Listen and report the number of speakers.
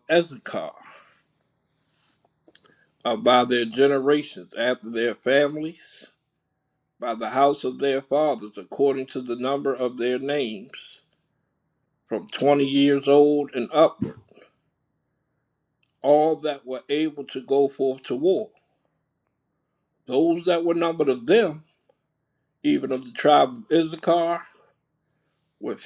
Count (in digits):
1